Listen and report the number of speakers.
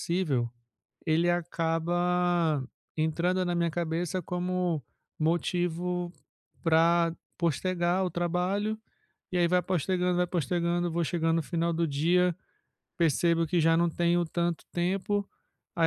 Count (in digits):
1